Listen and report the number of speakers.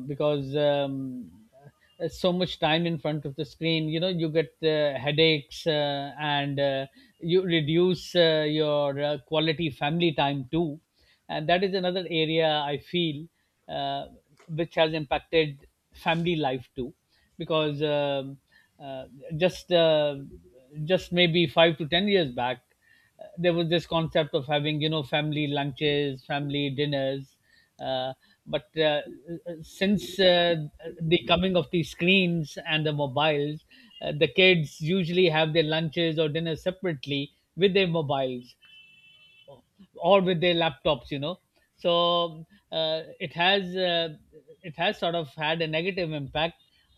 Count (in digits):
1